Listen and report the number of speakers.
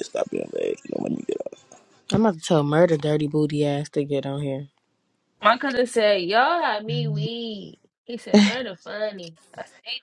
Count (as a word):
three